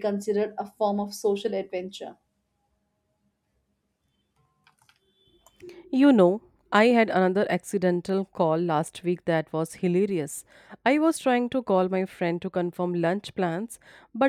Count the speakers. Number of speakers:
2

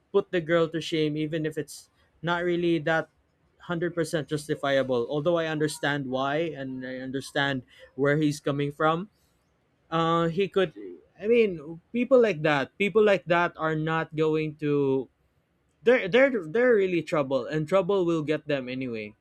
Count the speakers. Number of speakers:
1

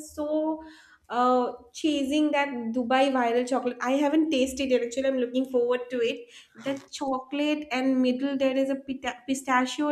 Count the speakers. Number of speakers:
1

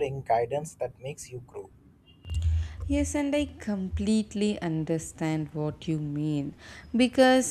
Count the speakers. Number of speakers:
2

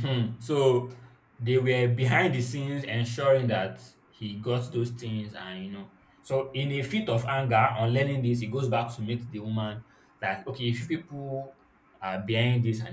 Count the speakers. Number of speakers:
1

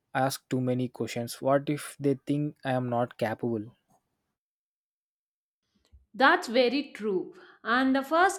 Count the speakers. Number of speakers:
2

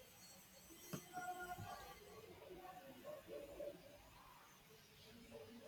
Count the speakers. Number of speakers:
0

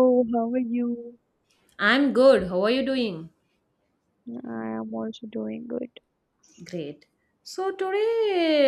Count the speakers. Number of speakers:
2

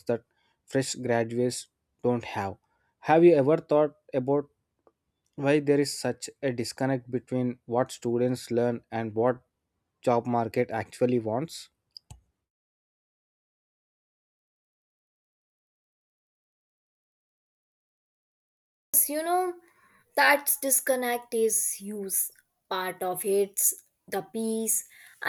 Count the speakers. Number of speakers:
2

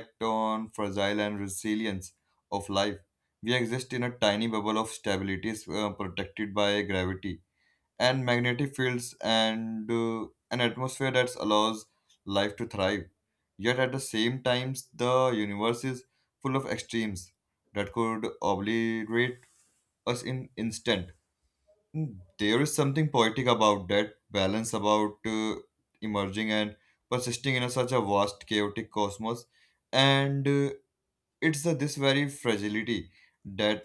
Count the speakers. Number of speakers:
1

